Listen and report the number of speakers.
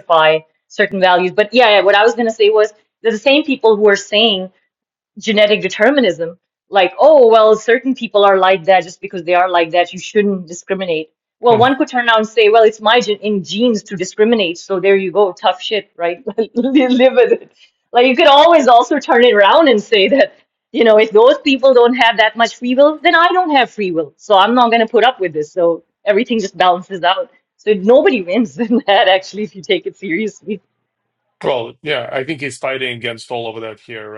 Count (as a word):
two